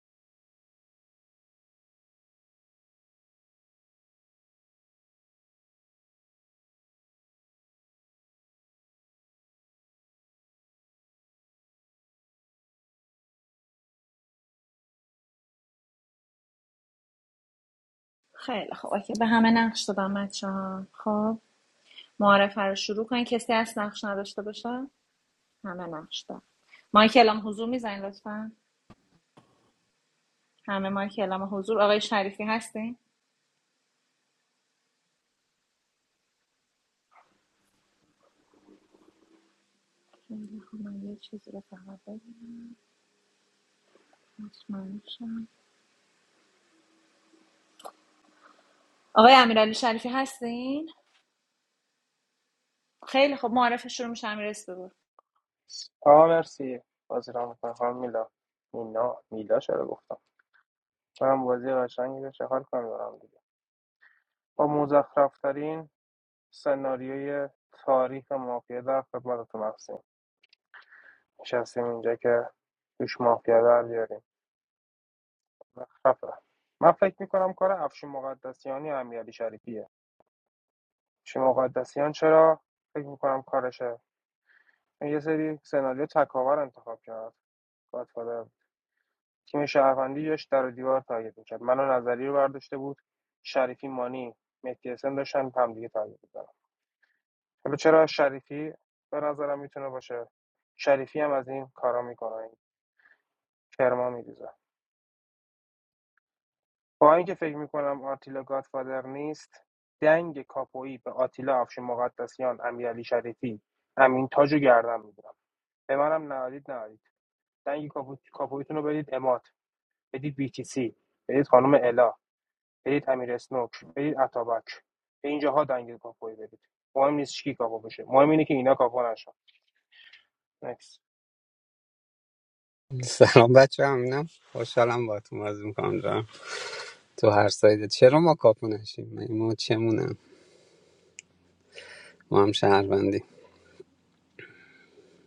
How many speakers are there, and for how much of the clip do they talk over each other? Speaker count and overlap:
three, no overlap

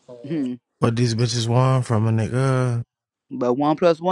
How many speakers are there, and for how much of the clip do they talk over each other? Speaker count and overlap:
two, no overlap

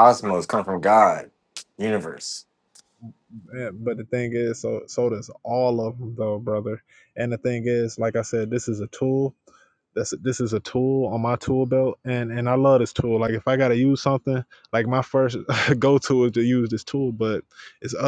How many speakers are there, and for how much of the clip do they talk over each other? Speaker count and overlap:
two, no overlap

